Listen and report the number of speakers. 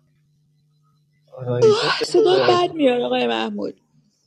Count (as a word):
two